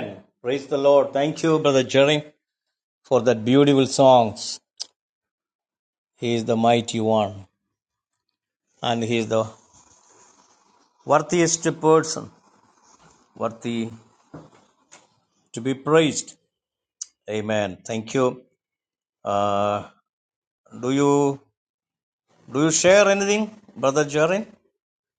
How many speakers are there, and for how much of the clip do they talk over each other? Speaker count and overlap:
1, no overlap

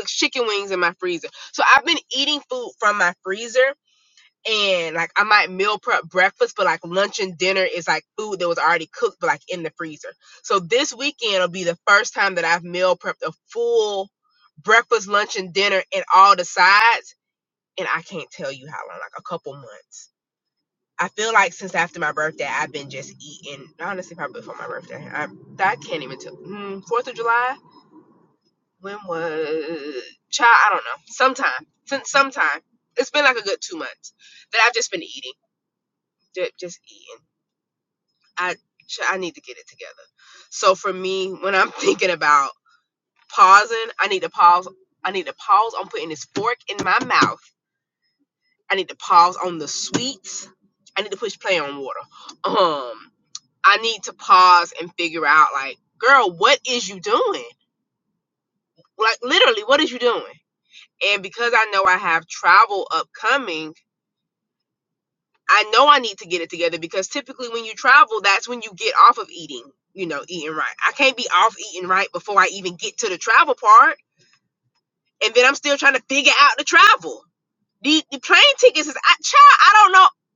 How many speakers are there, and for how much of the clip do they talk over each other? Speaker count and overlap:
1, no overlap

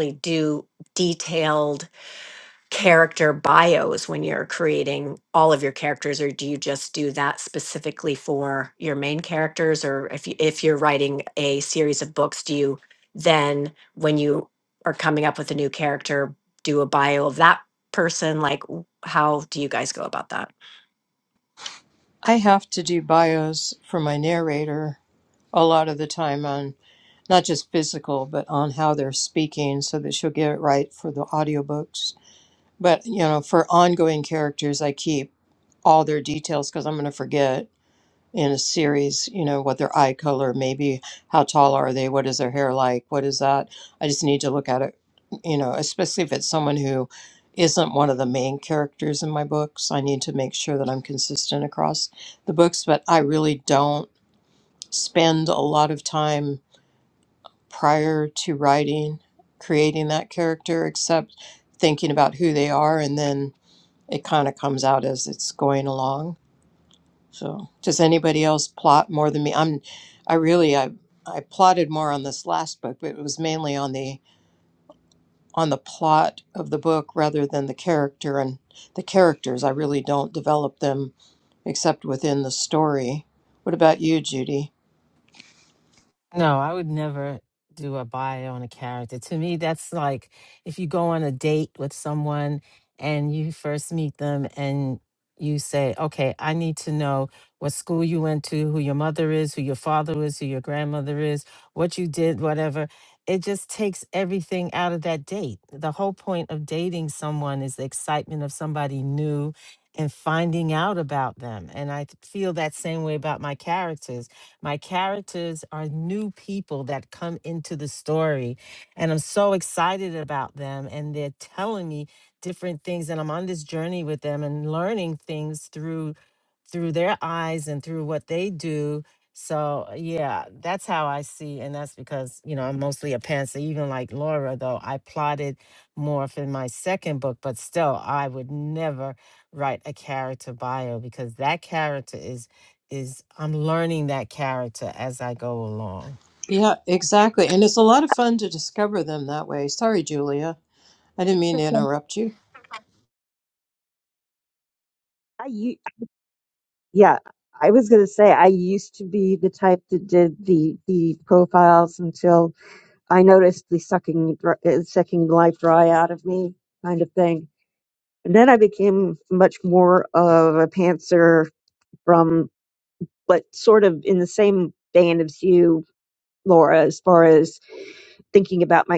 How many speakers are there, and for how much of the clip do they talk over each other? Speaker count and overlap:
4, under 1%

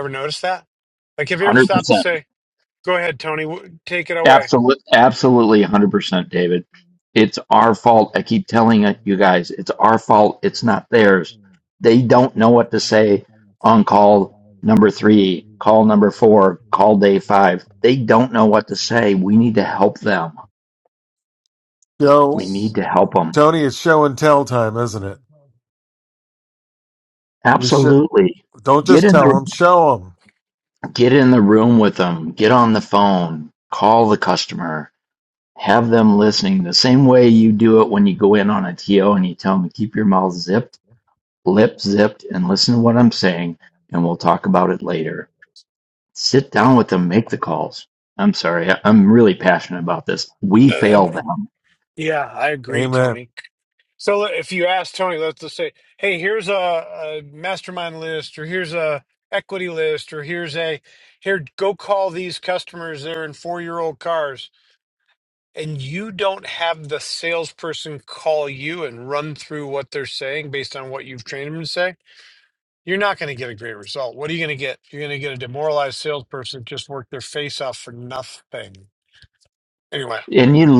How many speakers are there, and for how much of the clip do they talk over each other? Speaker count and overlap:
3, about 3%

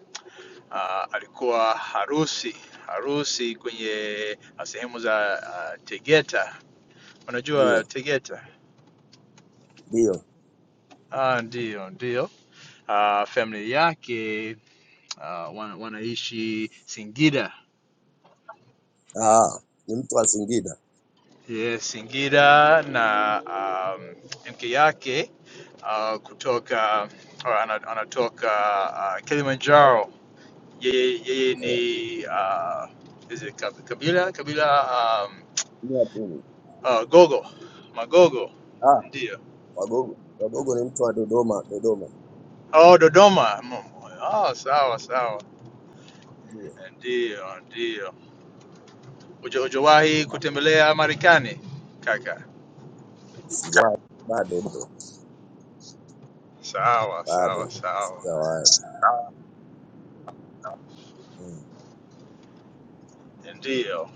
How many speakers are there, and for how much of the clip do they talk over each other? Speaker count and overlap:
2, about 1%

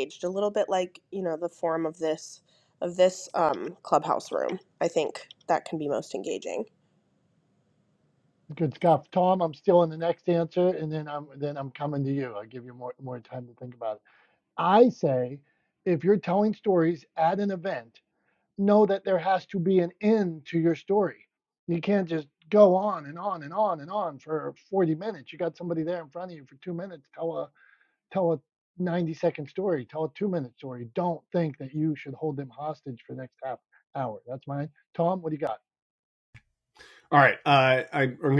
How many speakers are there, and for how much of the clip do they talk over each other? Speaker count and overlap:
3, no overlap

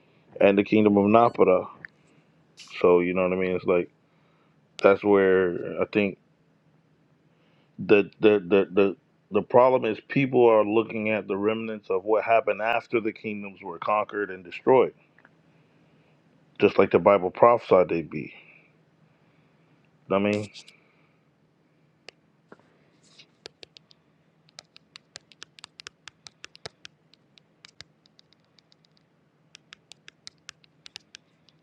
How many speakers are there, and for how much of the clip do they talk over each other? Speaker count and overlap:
1, no overlap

